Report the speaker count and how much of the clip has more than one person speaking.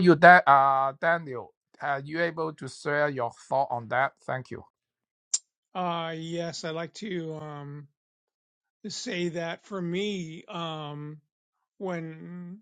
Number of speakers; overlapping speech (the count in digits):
2, no overlap